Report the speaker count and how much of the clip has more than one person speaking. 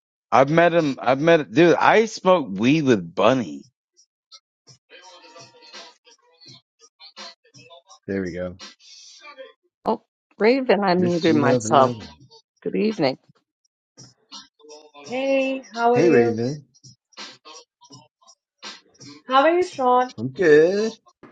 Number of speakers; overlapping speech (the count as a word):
four, about 6%